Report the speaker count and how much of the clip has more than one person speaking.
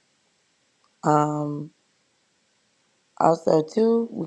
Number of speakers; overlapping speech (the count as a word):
one, no overlap